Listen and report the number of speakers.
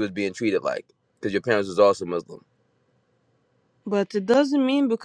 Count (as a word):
two